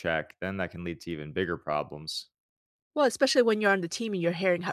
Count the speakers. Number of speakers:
2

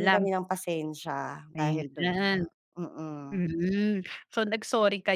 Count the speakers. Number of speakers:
2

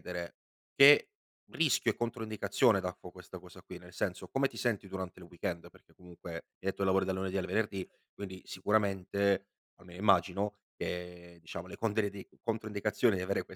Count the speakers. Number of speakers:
1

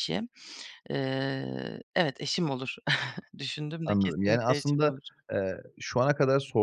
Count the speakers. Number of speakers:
2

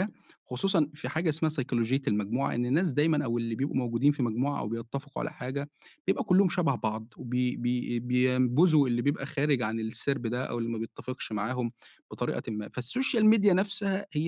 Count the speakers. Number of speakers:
1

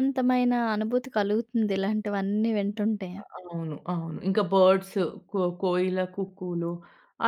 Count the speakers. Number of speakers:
2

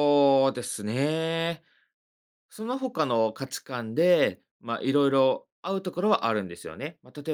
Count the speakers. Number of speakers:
1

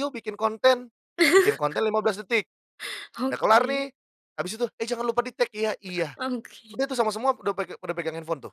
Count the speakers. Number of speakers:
2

